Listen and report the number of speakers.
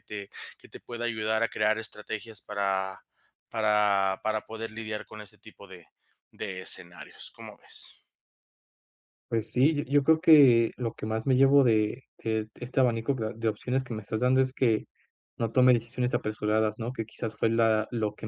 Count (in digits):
2